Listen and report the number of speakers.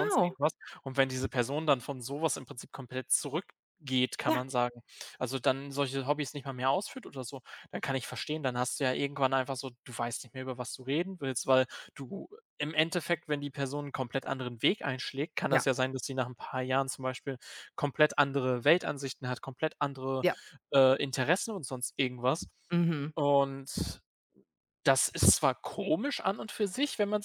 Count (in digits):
2